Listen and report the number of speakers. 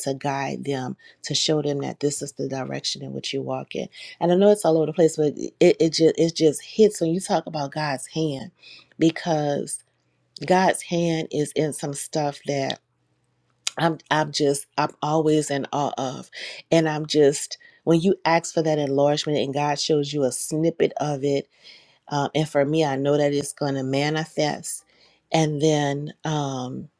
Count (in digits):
1